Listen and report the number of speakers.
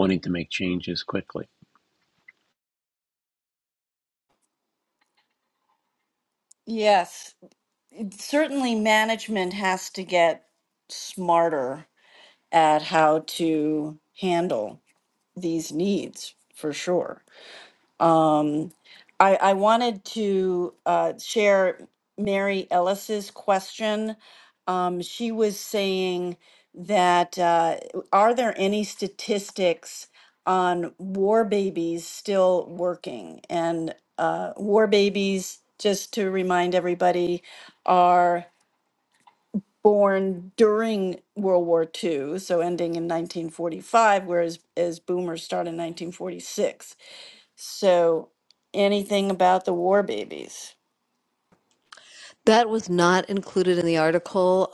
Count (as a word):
three